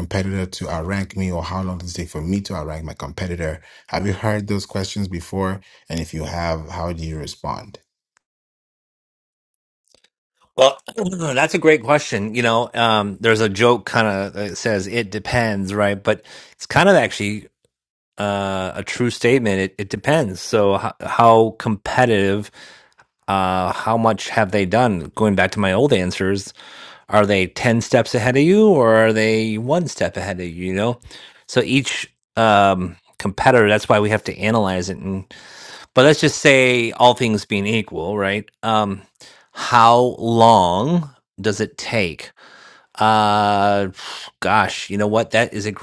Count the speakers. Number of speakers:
two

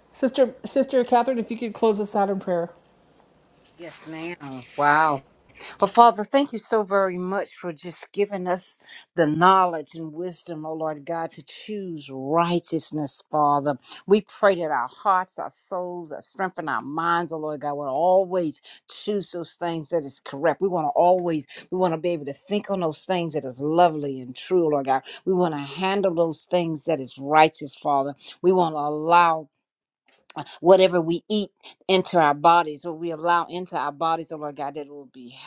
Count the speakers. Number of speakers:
two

